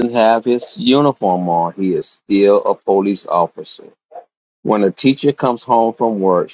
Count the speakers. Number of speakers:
one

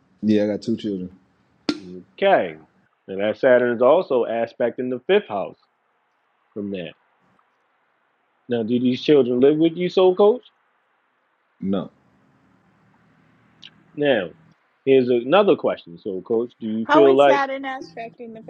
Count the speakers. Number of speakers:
three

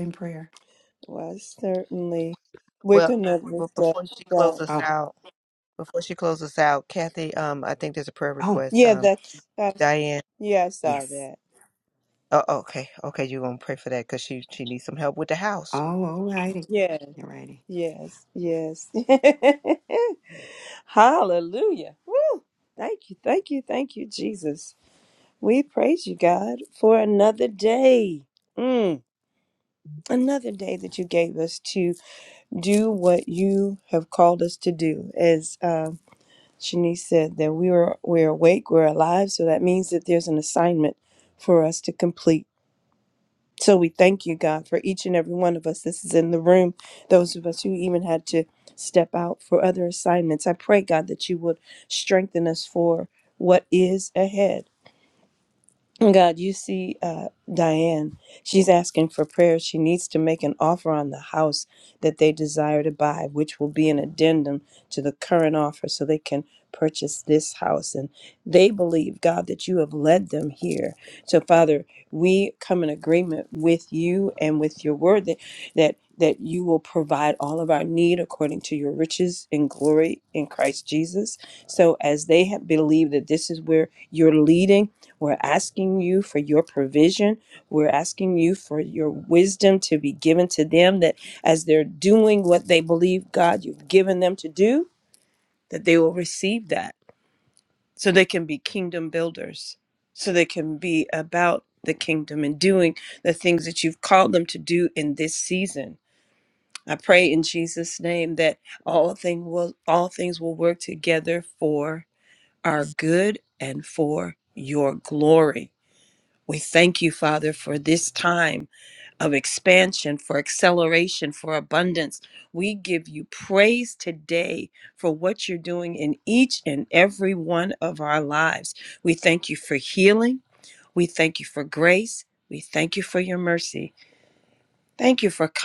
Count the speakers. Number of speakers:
three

